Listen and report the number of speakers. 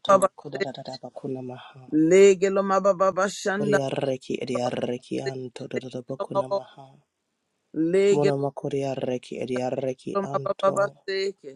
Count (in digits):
2